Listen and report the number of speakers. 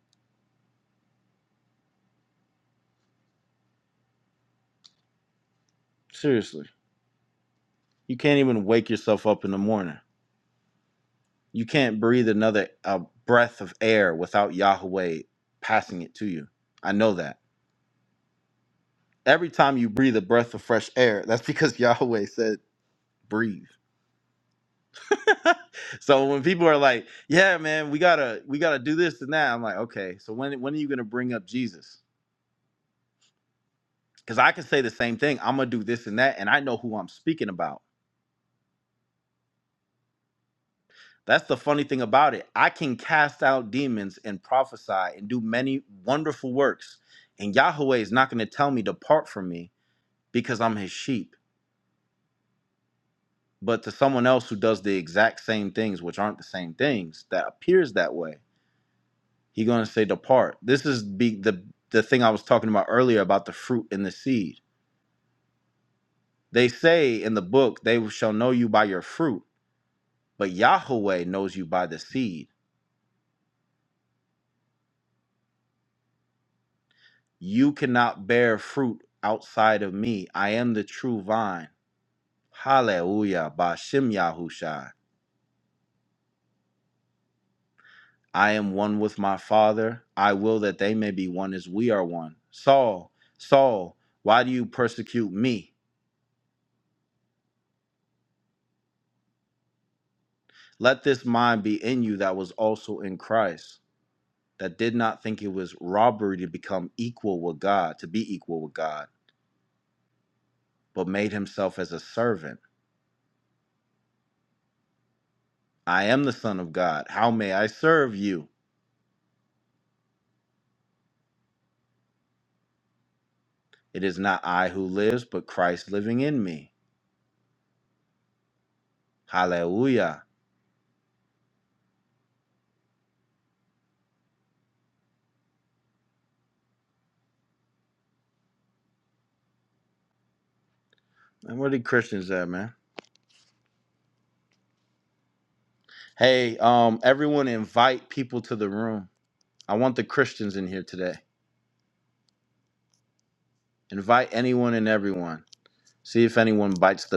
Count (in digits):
1